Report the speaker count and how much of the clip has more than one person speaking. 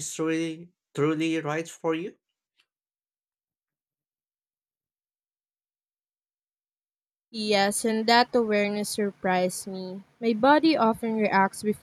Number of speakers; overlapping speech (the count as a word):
two, no overlap